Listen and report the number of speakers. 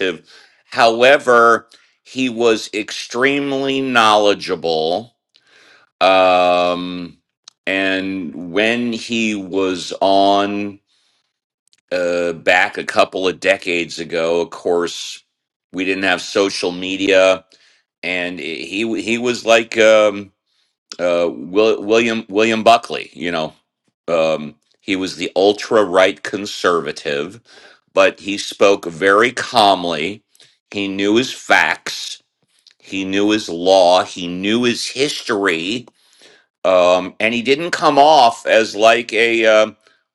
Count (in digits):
1